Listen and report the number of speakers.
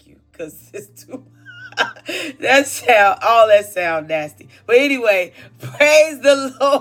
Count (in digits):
1